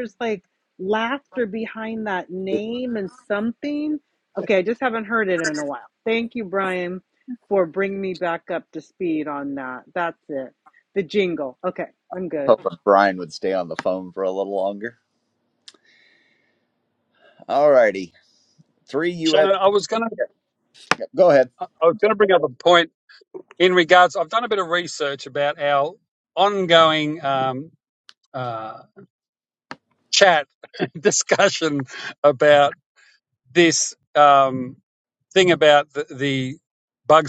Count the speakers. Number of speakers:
three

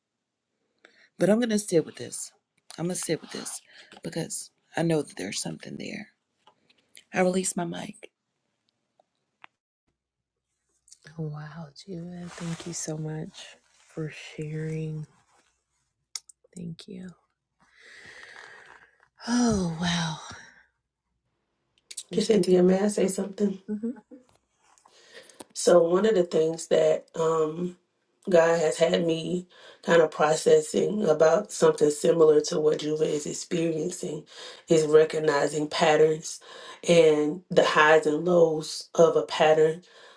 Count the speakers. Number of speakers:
three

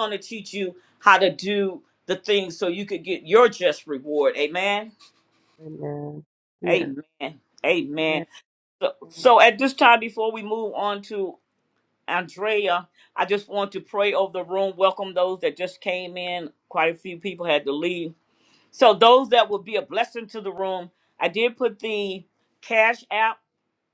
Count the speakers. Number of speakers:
two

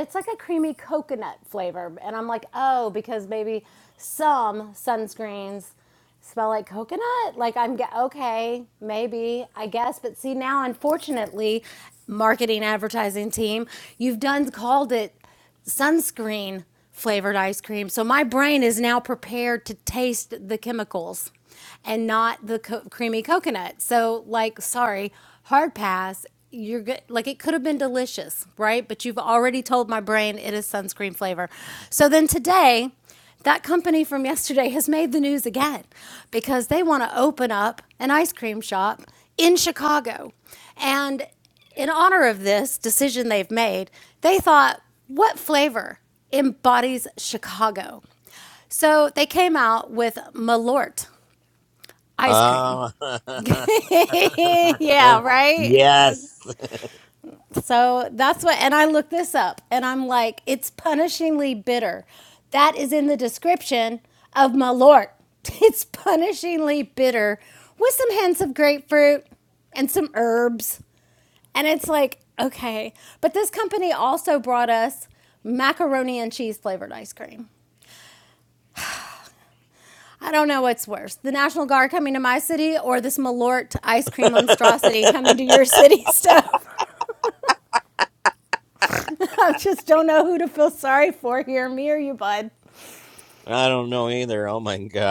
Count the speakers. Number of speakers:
two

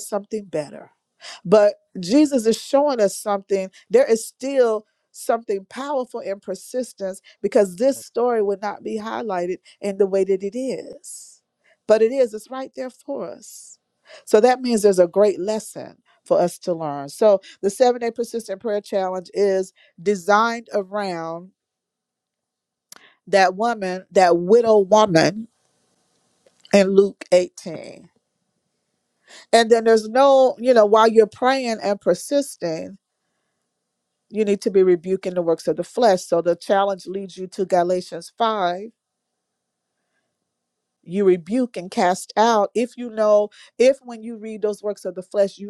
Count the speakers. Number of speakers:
one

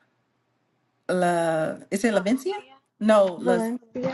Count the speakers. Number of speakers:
two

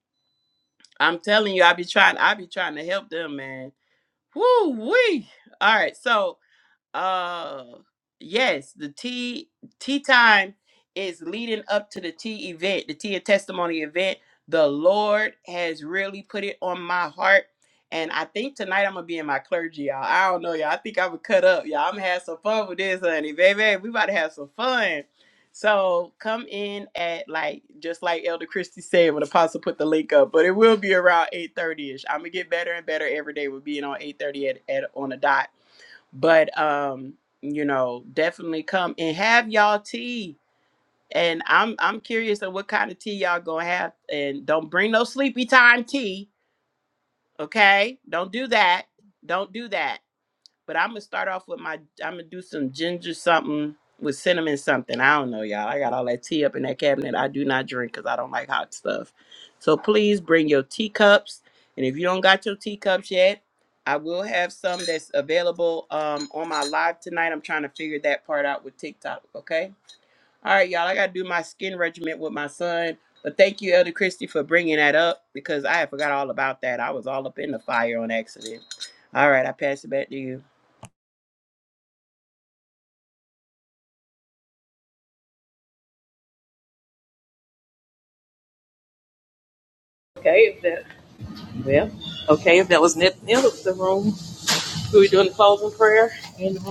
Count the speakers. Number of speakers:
two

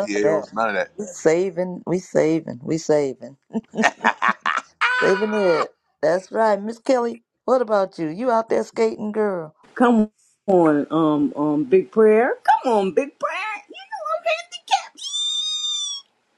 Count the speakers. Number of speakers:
three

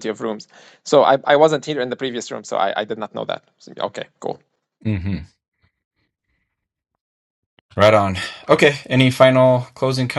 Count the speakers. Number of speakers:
two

